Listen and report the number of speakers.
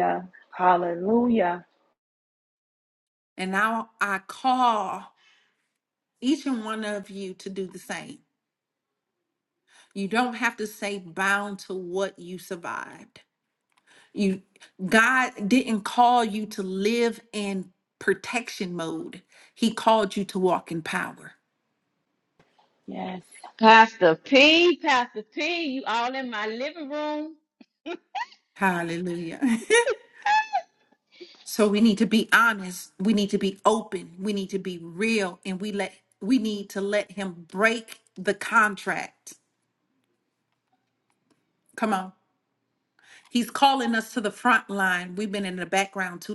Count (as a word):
three